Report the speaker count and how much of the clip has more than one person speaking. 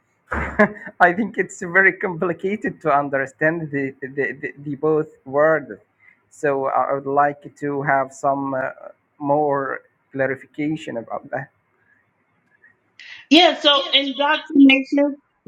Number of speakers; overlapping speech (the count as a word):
two, no overlap